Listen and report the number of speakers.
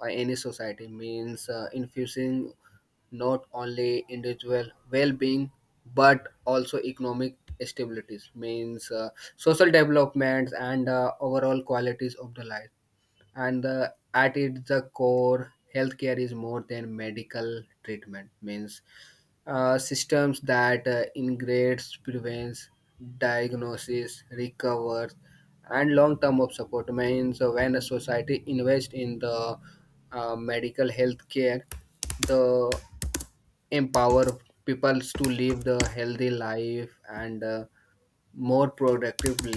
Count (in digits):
1